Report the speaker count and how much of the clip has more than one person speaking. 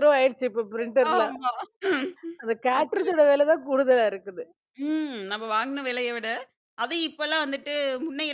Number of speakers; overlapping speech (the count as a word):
two, about 3%